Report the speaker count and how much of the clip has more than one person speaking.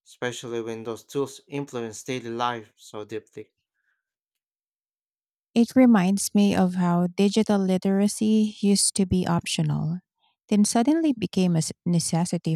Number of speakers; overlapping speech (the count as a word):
two, no overlap